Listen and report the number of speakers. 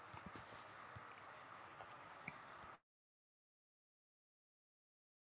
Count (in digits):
0